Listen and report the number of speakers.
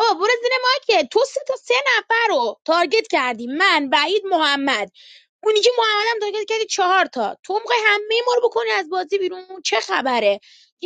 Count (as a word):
one